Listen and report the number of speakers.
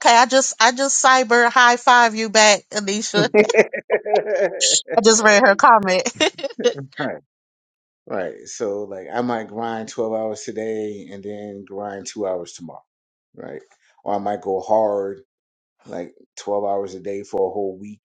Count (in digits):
2